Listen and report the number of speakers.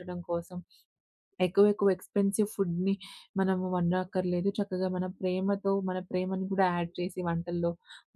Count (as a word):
one